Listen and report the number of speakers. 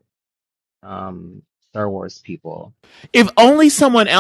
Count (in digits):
2